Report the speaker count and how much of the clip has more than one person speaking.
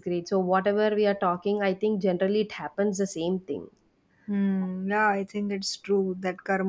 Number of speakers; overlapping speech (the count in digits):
2, no overlap